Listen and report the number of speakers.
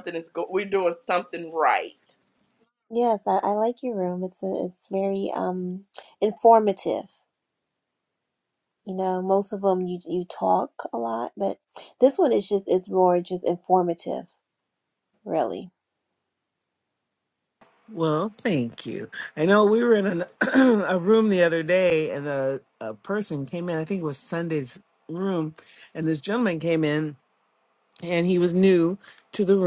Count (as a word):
three